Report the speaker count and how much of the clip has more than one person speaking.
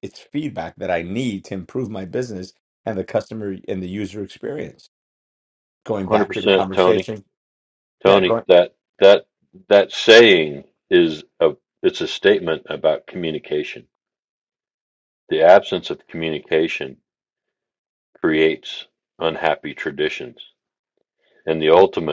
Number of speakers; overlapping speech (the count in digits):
2, about 6%